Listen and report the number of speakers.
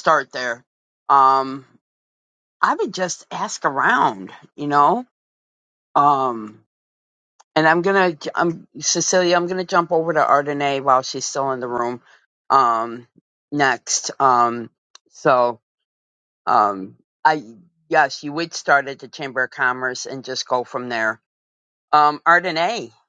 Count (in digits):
1